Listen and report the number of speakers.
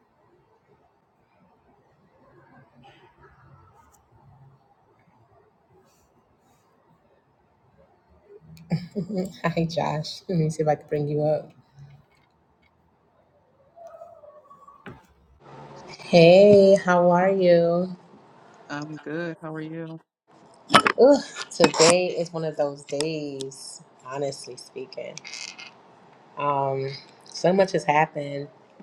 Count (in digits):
2